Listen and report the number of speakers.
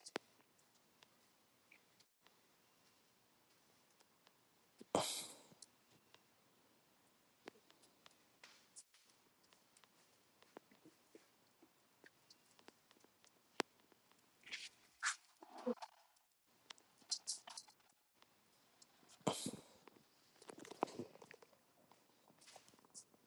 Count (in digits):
0